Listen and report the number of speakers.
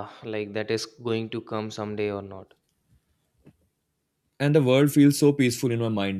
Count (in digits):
2